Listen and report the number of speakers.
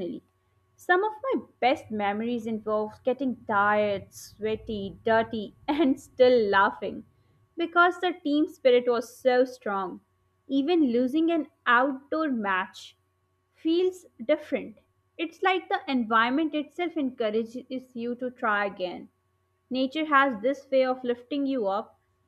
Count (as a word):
one